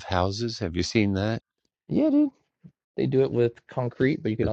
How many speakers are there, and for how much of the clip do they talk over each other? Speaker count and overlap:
2, about 2%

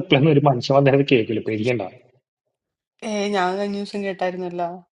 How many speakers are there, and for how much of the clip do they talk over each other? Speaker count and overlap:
2, no overlap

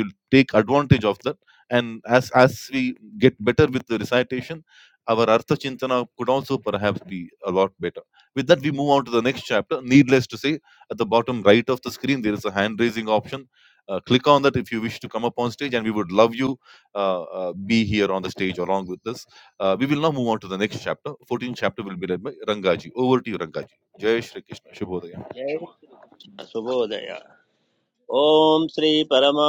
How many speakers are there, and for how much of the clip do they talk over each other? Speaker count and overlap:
2, no overlap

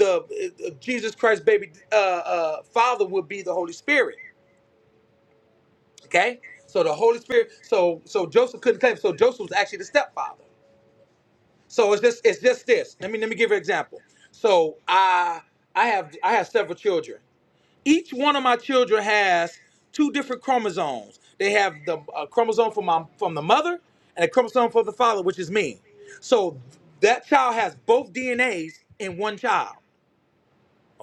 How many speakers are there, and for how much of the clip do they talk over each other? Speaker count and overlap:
1, no overlap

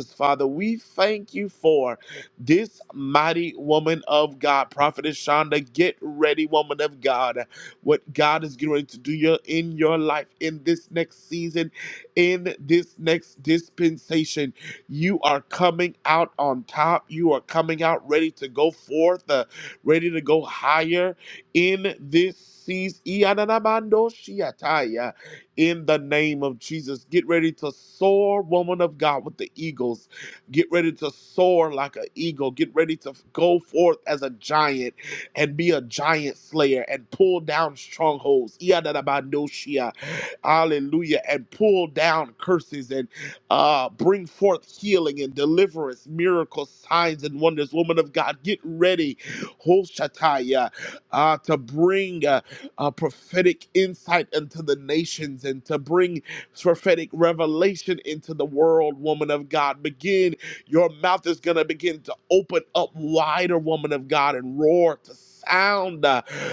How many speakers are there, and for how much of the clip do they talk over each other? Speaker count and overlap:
1, no overlap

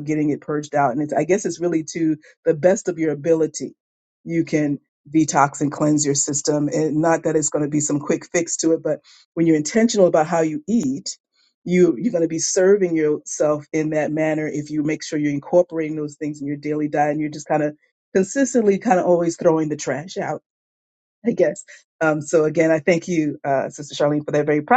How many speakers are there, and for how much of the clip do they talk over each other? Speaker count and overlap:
1, no overlap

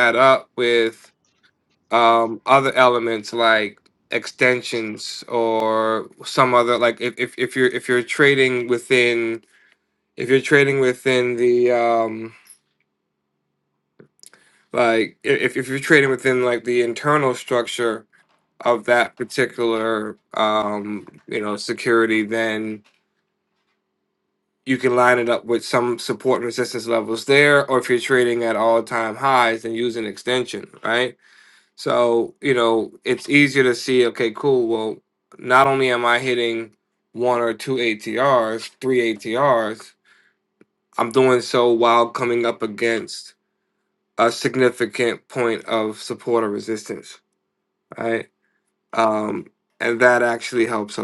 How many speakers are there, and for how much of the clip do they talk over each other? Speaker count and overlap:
1, no overlap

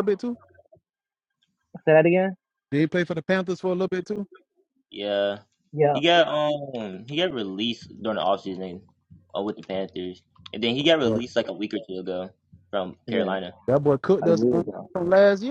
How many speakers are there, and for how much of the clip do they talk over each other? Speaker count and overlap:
3, about 6%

